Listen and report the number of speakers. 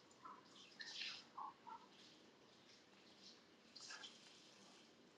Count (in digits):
0